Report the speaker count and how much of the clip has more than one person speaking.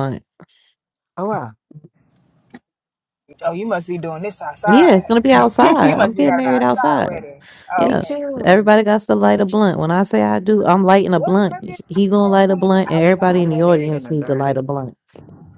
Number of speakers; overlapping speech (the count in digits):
3, about 39%